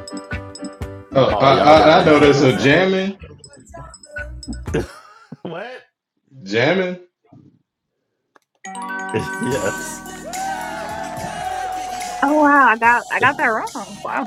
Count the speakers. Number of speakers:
three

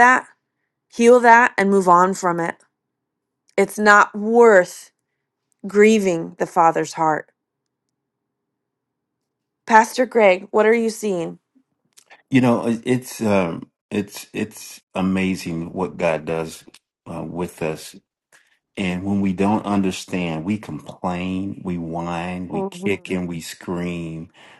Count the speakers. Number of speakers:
two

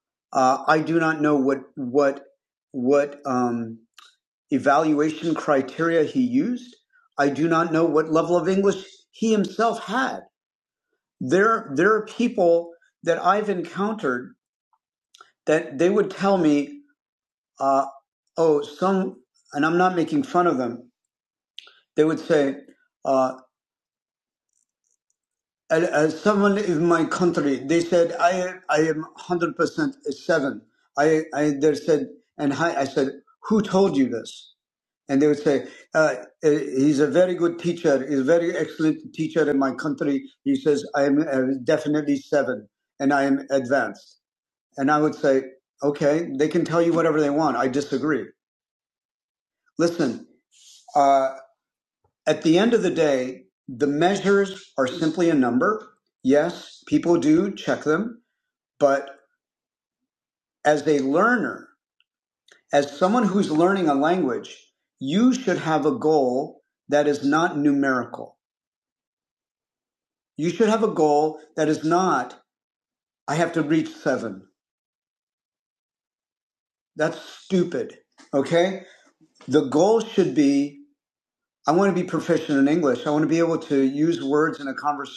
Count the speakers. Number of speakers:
one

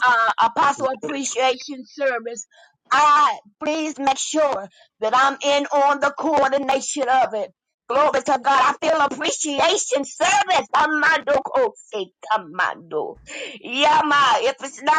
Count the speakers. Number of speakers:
one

